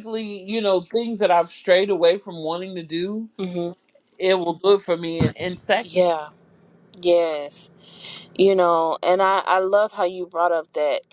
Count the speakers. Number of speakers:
2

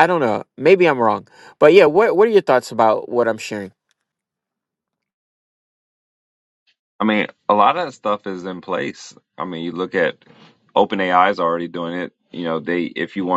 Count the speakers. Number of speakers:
2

